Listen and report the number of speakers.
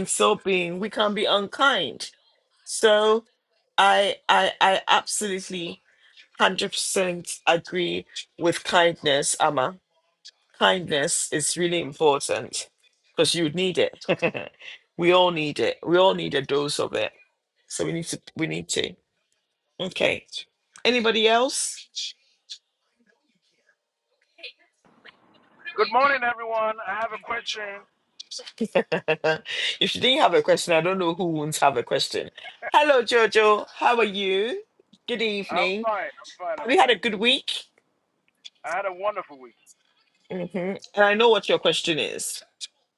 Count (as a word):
two